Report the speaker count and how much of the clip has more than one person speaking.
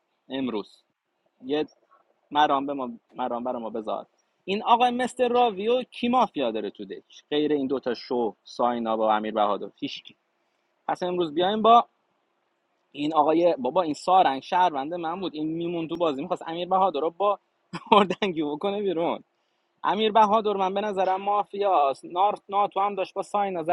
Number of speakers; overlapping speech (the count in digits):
1, no overlap